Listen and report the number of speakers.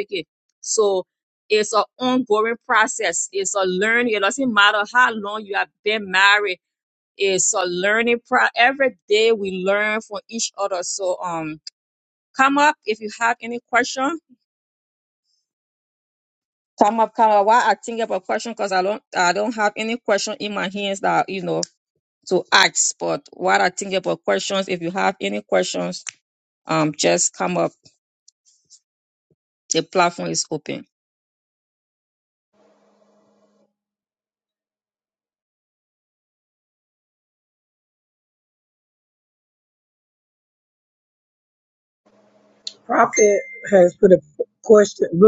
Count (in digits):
2